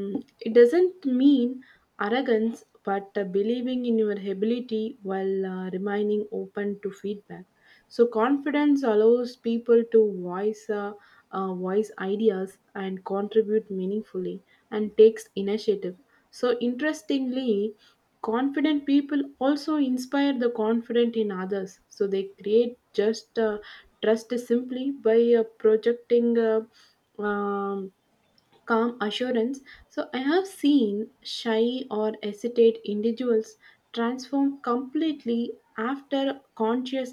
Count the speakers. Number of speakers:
one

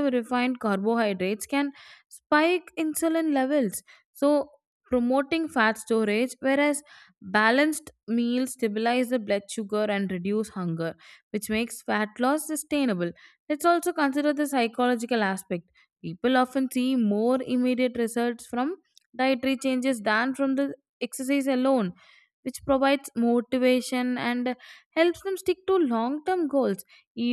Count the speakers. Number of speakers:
one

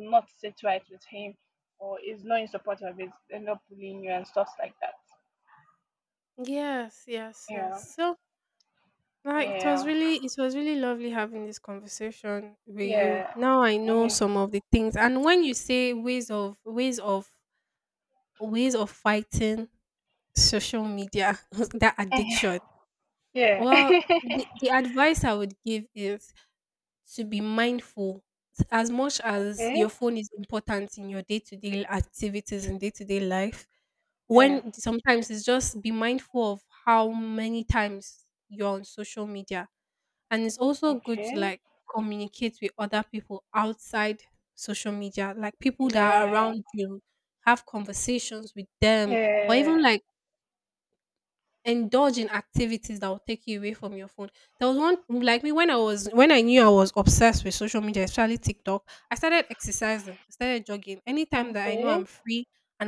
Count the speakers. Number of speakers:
two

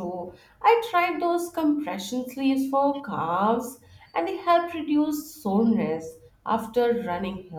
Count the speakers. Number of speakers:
one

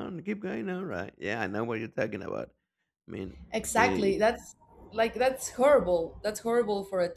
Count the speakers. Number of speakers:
two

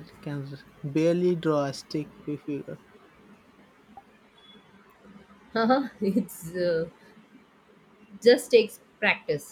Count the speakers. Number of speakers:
two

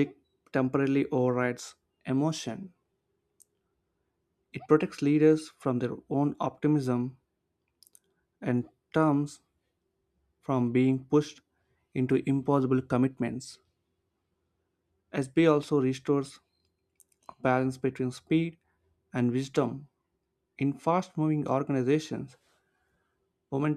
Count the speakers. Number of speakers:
one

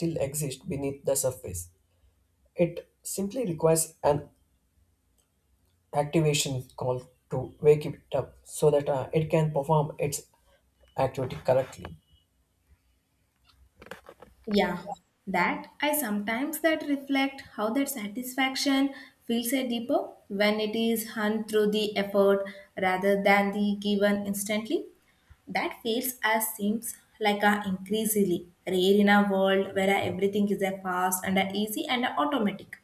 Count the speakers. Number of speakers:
two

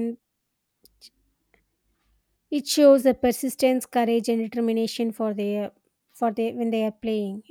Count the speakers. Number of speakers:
one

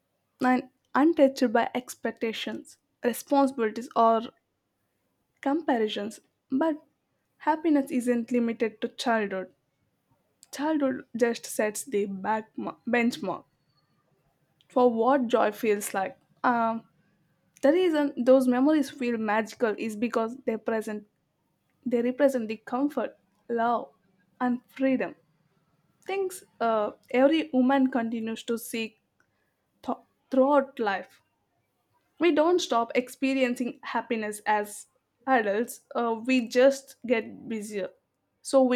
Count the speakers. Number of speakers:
one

